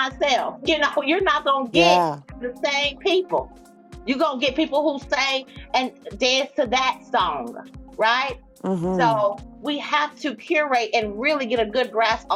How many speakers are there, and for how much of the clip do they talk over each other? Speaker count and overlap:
2, about 5%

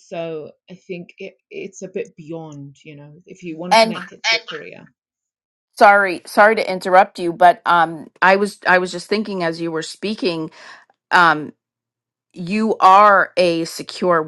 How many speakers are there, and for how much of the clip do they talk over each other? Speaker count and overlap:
2, about 2%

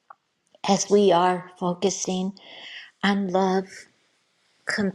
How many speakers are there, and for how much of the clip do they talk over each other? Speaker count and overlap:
1, no overlap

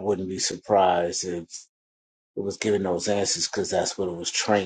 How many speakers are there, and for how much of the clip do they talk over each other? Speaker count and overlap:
1, no overlap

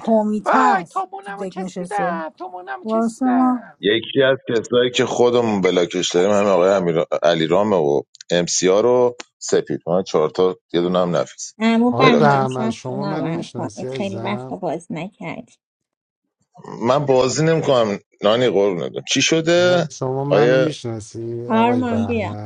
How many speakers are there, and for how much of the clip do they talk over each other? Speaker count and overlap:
5, about 28%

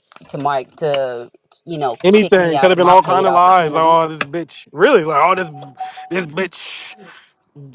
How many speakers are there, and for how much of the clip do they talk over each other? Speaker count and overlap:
2, about 25%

